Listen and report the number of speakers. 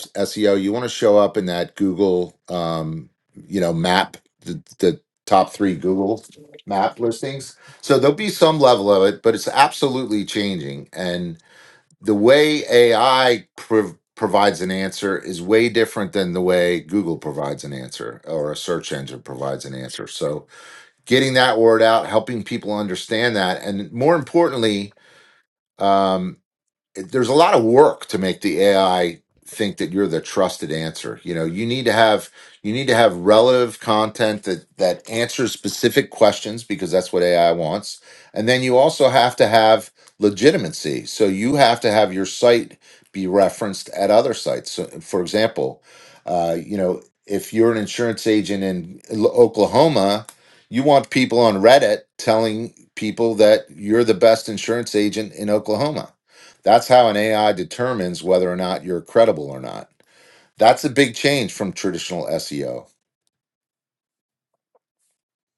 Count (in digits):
1